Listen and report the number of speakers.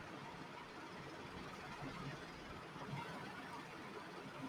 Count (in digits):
0